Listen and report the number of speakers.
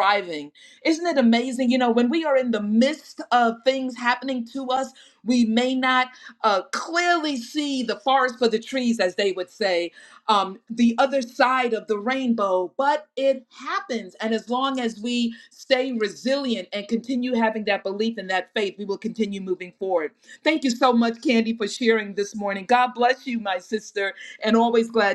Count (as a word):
one